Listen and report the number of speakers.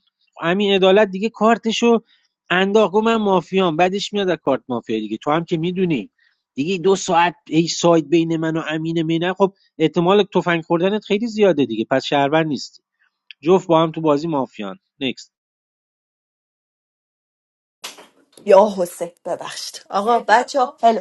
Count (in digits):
2